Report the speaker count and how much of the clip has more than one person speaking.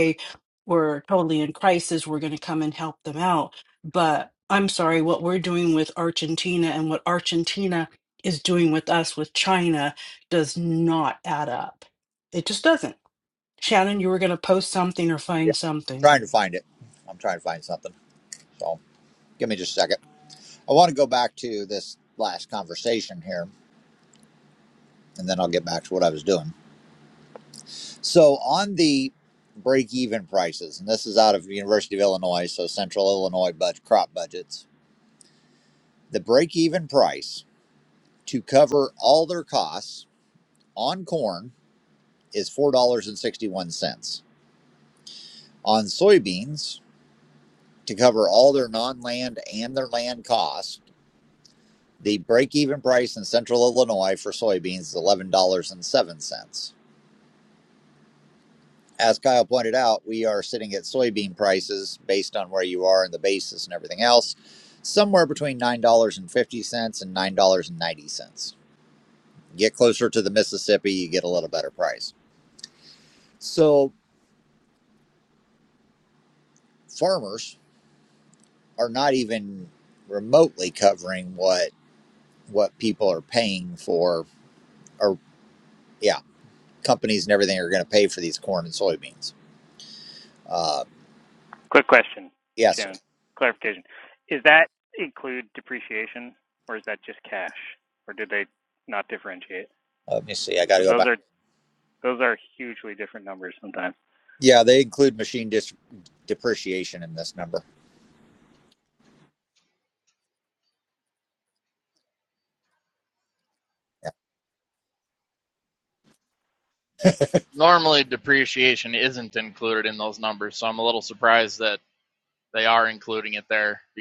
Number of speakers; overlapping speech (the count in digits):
4, about 1%